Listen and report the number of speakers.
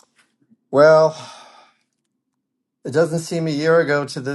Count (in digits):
1